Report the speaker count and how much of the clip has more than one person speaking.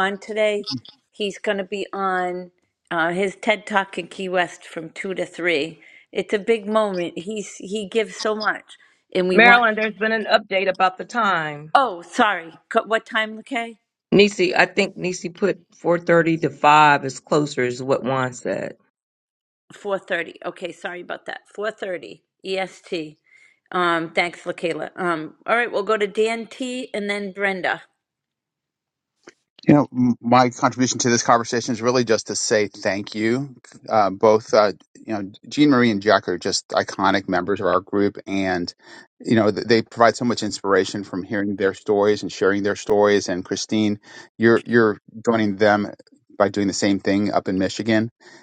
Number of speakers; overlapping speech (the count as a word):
three, about 1%